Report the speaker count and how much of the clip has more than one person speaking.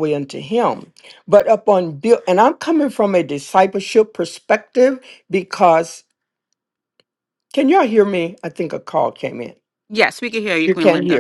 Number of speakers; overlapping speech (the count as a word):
two, about 5%